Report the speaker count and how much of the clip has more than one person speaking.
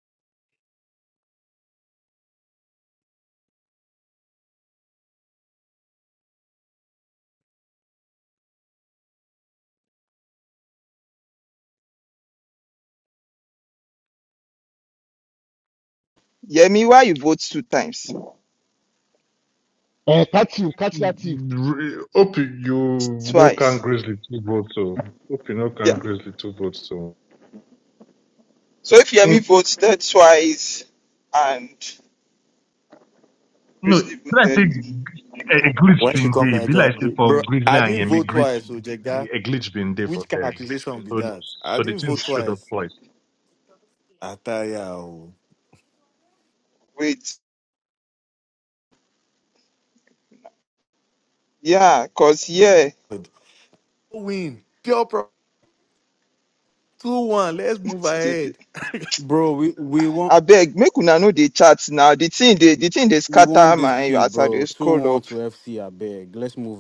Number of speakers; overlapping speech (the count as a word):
five, about 13%